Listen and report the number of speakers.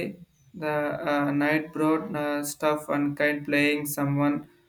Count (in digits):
1